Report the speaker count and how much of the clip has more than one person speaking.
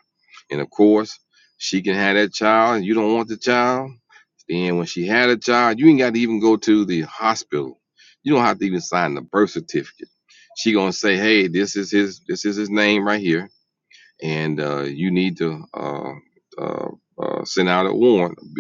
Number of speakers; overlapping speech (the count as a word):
one, no overlap